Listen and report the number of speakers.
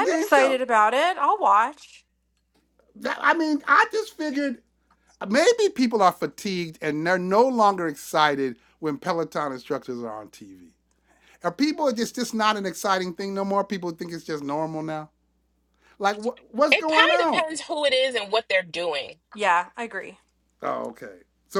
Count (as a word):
three